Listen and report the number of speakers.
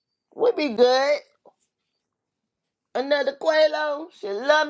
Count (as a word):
one